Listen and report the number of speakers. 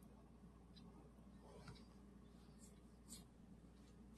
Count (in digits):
0